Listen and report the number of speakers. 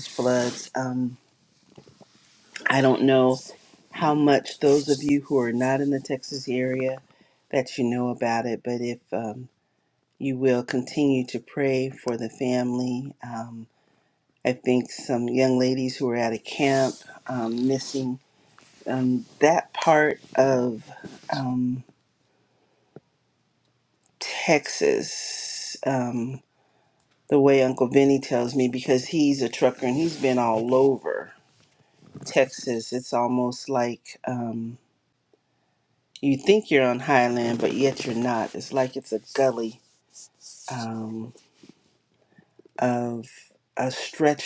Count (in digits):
1